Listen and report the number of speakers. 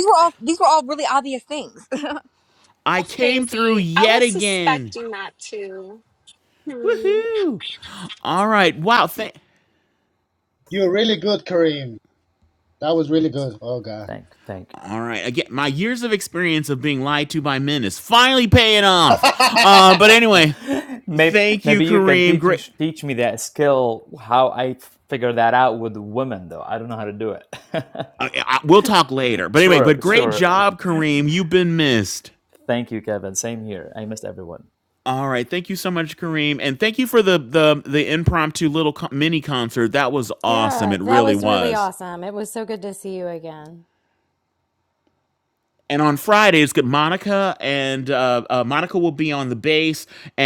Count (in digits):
6